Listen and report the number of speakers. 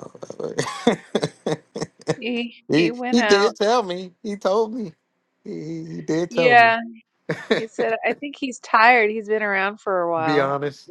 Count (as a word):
two